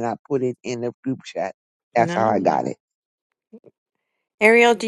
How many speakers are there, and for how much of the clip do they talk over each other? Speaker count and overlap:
2, about 11%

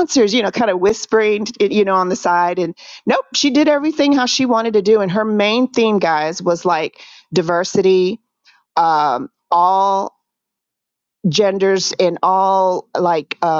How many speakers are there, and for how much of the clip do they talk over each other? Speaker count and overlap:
1, no overlap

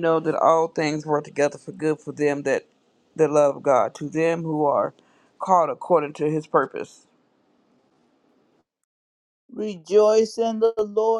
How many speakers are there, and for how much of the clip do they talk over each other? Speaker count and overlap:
2, no overlap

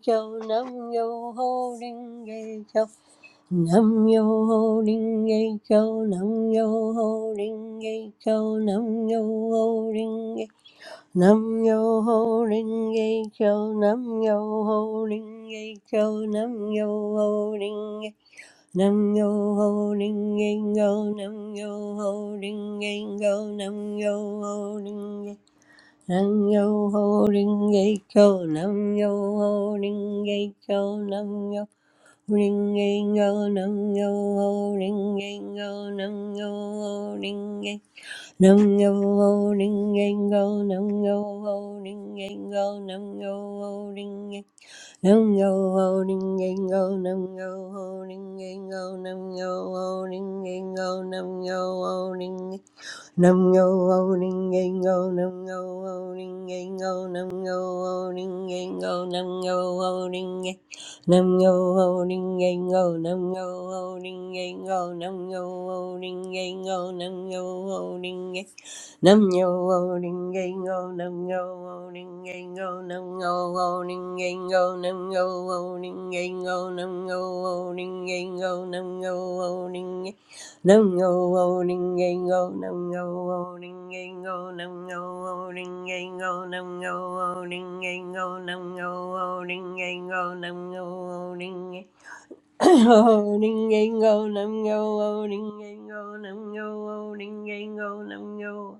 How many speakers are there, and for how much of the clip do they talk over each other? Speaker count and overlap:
1, no overlap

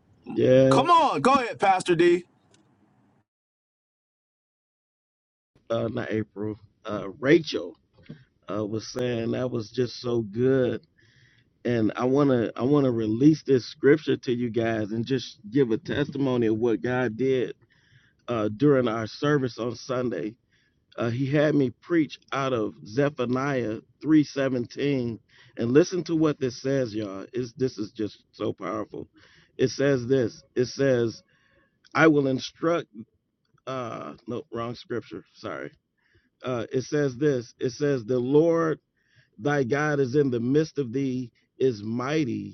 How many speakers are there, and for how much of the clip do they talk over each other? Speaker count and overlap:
2, under 1%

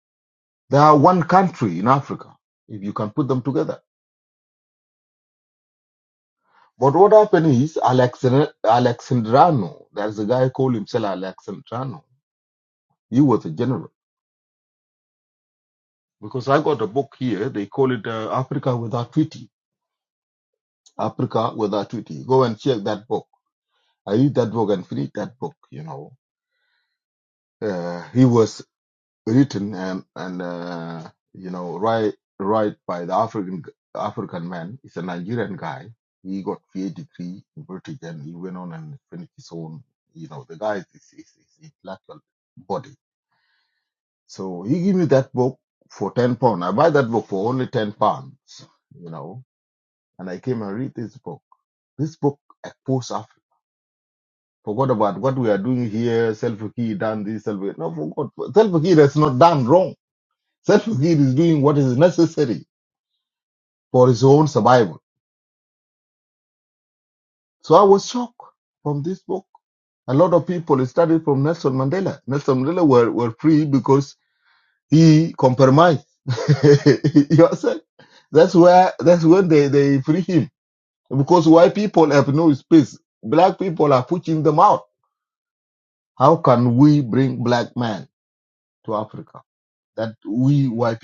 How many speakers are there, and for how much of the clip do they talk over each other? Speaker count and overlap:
1, no overlap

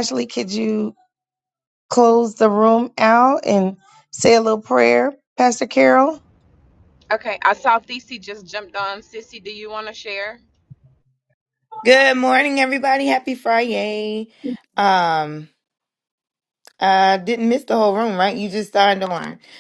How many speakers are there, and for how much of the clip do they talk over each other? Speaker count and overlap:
3, no overlap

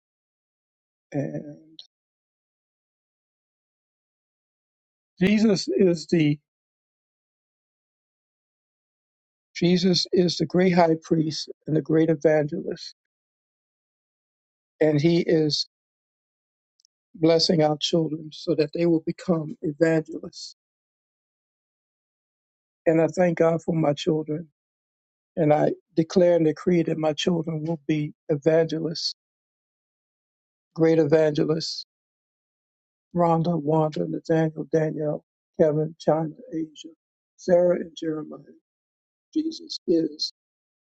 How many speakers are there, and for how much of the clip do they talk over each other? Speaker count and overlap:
1, no overlap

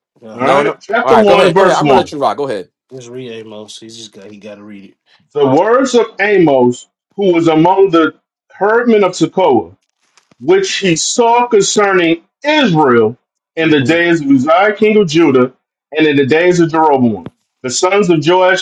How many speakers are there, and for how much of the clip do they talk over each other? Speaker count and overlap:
3, about 11%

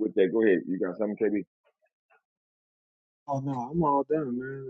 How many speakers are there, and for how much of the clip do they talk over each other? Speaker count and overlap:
2, no overlap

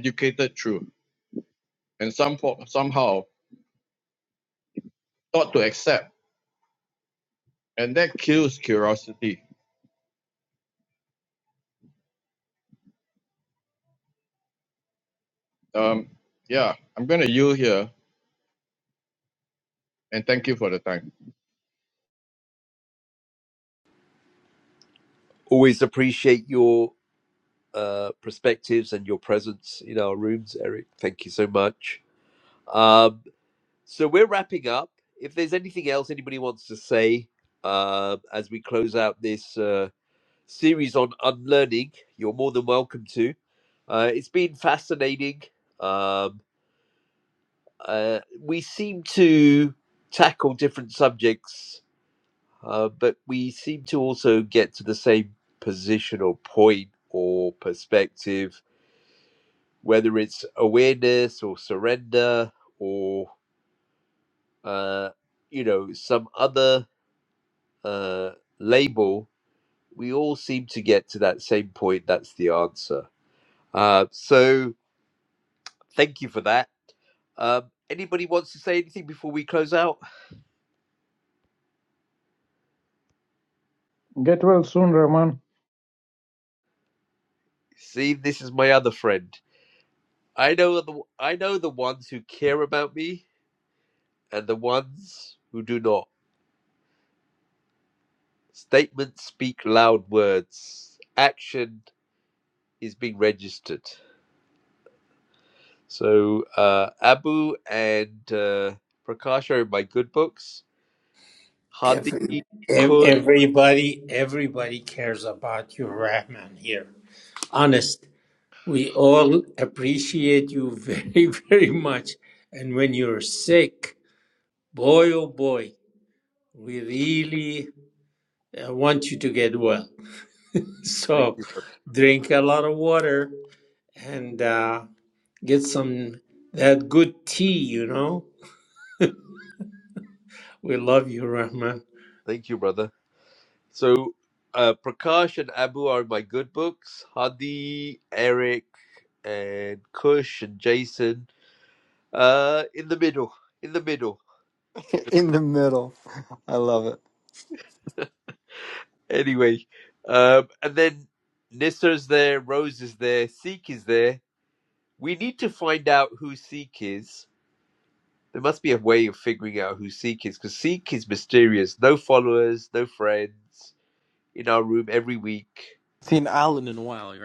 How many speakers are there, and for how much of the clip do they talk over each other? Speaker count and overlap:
6, about 1%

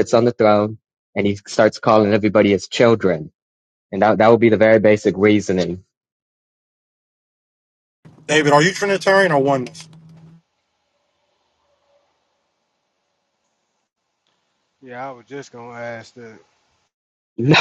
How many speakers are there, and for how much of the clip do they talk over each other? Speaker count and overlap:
3, no overlap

